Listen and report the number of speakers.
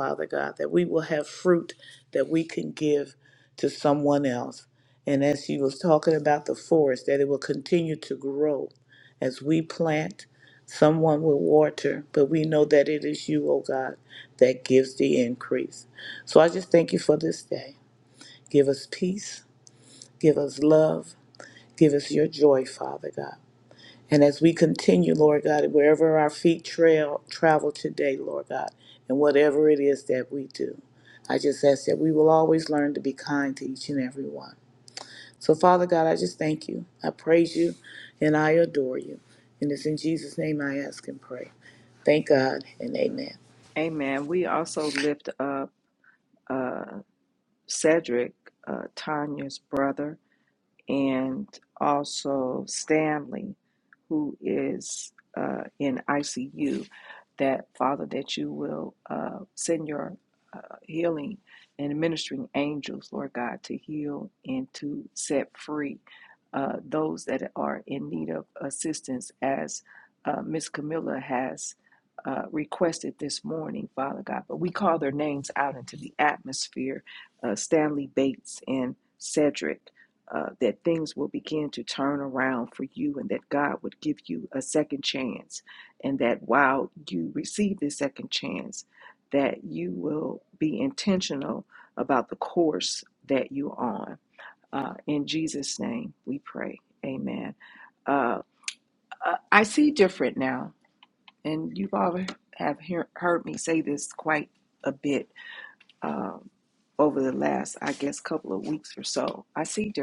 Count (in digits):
2